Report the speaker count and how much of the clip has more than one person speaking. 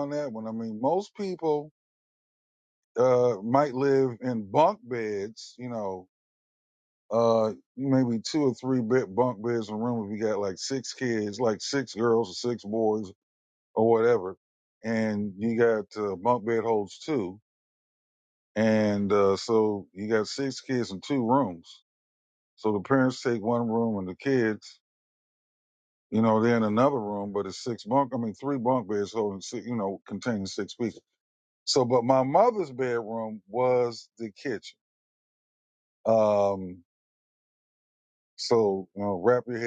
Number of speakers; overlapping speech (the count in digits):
1, no overlap